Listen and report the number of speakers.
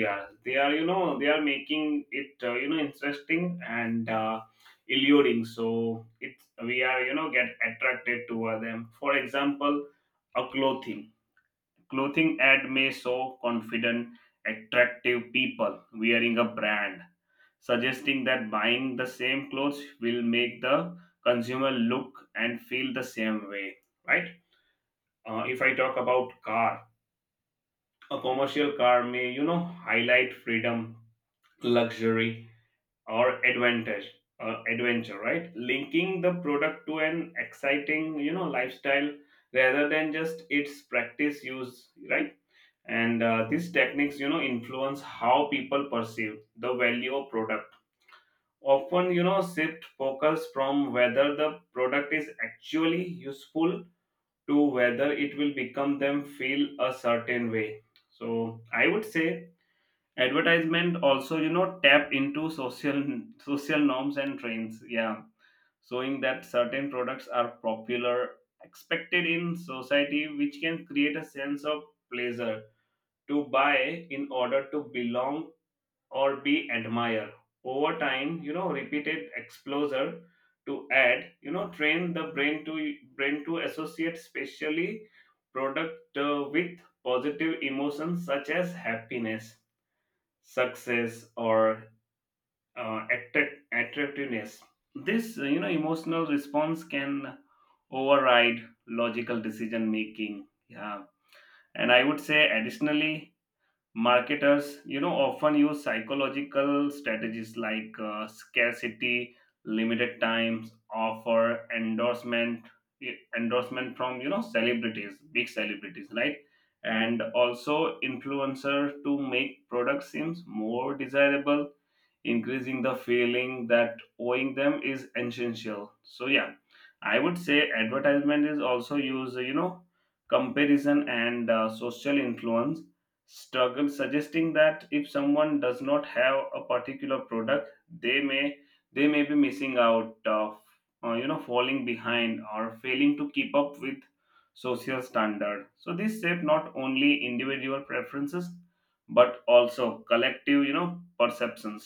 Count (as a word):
one